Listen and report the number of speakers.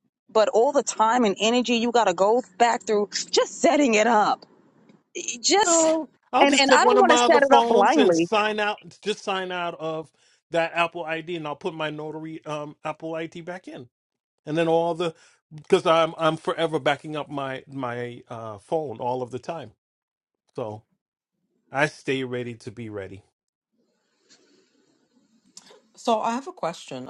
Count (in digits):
3